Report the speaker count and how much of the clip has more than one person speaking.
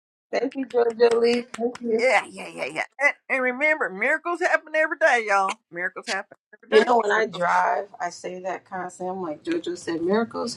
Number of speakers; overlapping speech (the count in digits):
2, about 7%